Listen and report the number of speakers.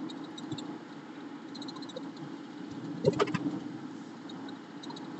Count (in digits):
0